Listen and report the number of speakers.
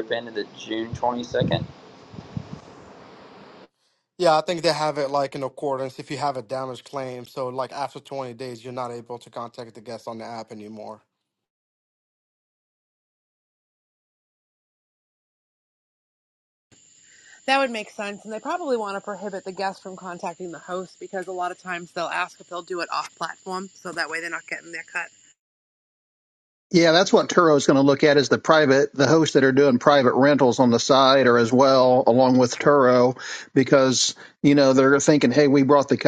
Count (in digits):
4